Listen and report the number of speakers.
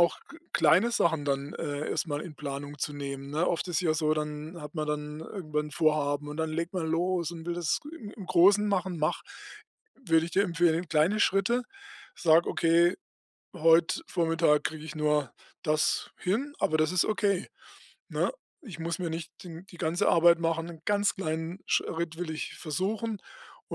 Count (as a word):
one